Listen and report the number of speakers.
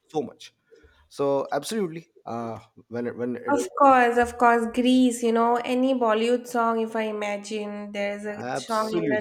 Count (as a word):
two